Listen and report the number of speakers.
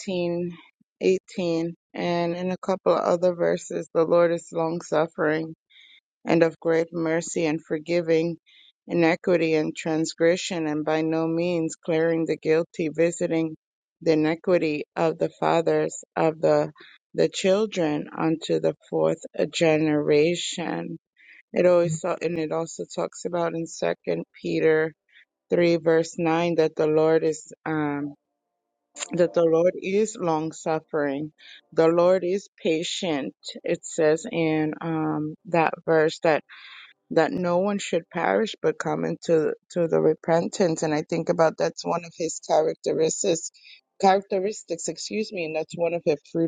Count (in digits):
1